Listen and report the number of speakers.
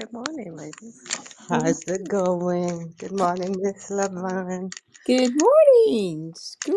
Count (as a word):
three